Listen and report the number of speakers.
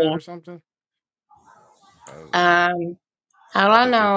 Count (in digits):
2